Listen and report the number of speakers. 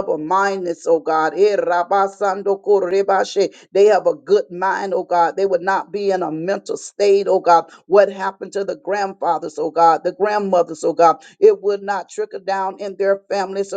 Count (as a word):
one